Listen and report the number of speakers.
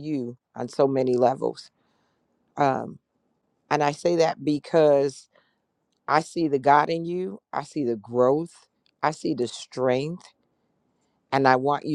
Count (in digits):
1